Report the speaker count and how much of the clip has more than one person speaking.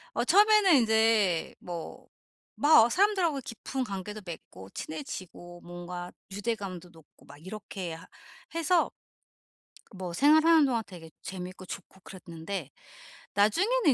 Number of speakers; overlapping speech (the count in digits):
1, no overlap